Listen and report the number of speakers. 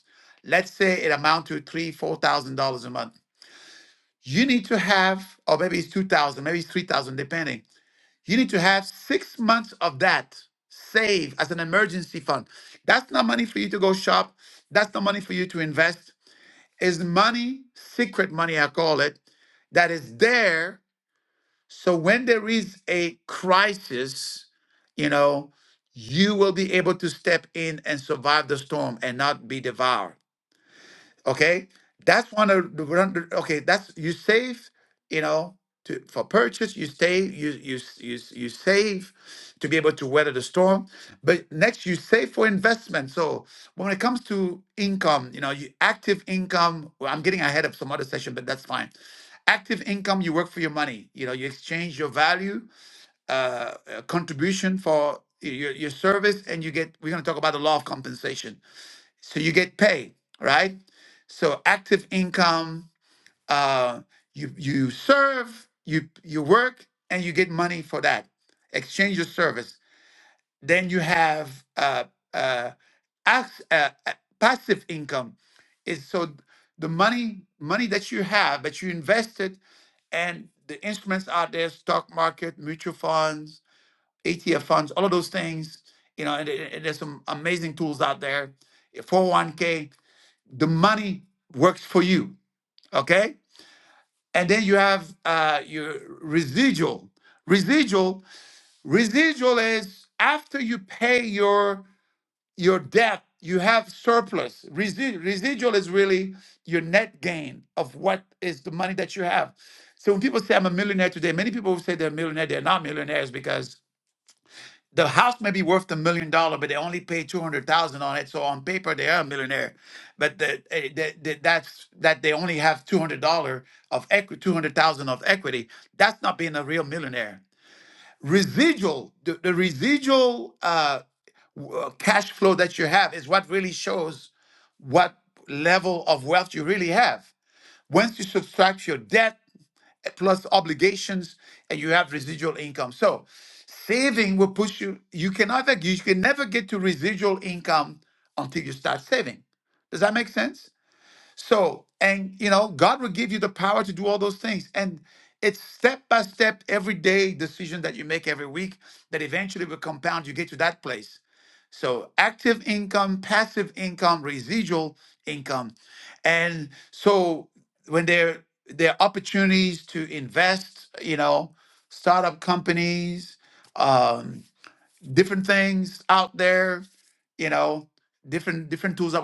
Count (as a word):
one